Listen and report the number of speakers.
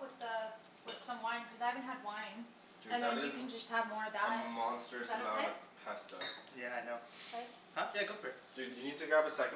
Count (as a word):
three